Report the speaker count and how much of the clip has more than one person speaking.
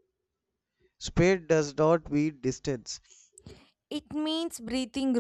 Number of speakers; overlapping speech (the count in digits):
2, no overlap